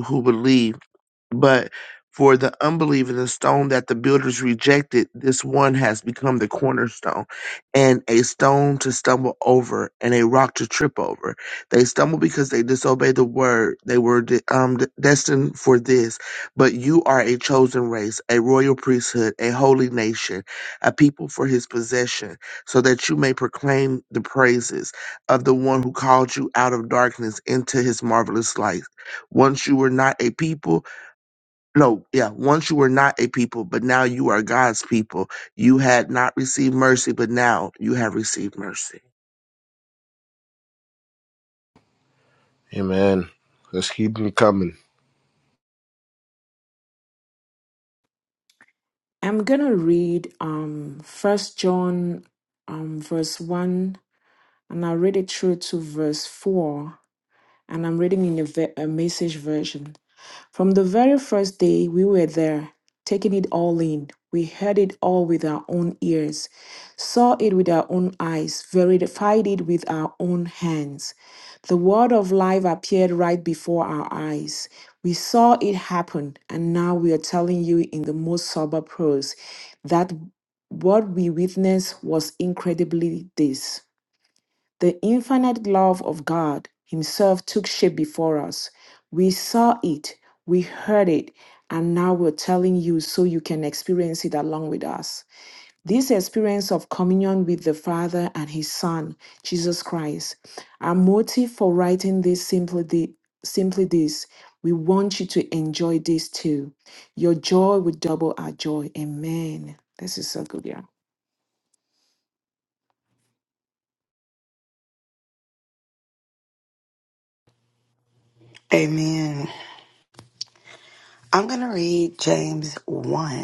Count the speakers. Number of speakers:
4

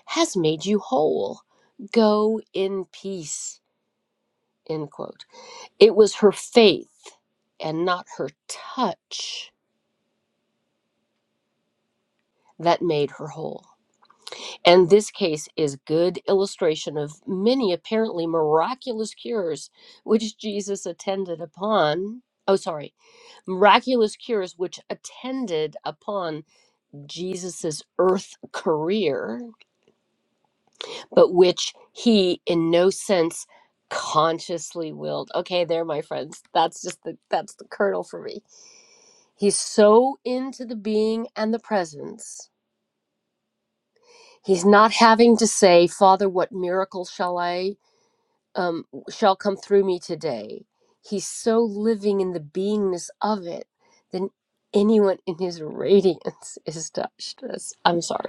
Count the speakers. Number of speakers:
1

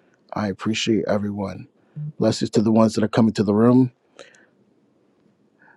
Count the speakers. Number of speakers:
1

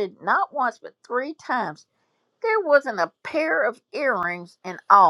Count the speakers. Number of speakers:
1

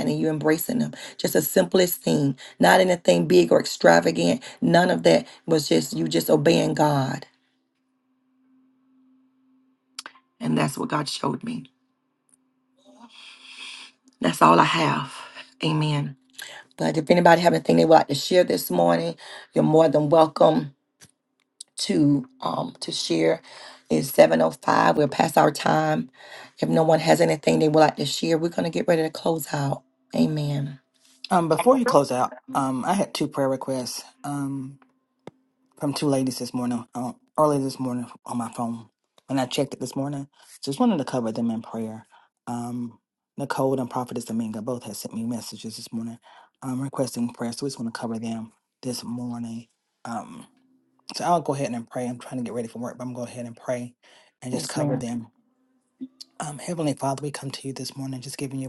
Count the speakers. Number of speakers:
2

